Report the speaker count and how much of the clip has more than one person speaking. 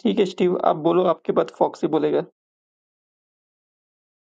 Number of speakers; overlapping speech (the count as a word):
one, no overlap